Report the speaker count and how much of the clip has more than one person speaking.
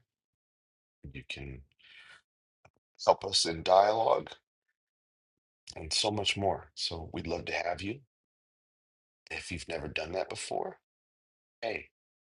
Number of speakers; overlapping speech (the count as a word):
one, no overlap